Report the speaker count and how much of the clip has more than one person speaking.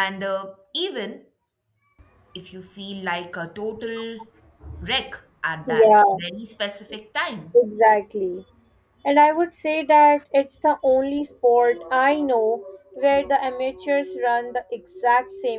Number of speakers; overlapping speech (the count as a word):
two, about 3%